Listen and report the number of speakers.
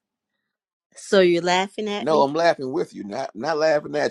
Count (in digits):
2